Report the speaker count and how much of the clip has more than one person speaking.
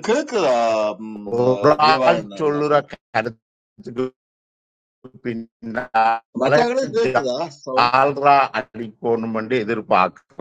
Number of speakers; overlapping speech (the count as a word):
two, about 17%